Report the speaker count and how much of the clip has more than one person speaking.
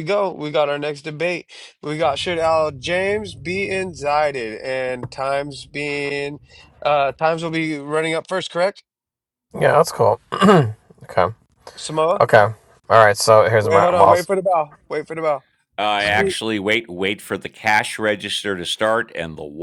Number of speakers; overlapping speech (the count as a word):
three, about 3%